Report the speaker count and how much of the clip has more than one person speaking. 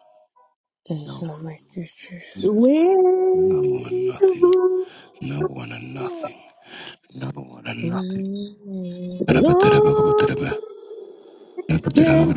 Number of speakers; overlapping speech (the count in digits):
3, about 19%